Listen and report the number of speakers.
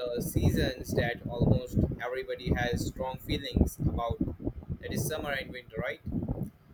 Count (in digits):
1